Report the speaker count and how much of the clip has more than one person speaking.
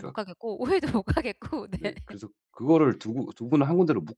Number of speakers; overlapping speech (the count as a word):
two, about 7%